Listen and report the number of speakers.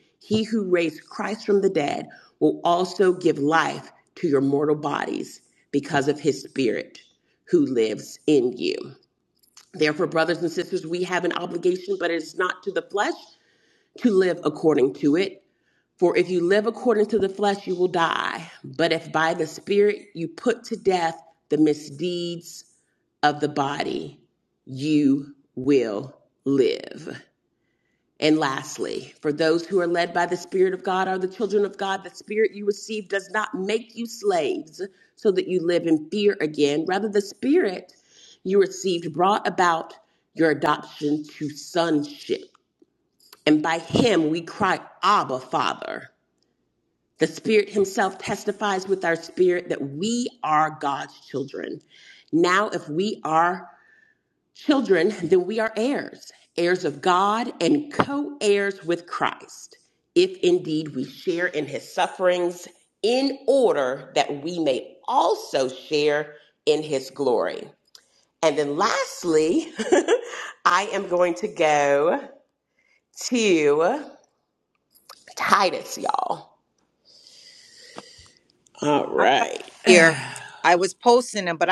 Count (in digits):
2